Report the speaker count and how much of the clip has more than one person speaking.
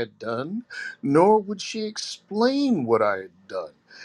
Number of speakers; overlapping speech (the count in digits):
1, no overlap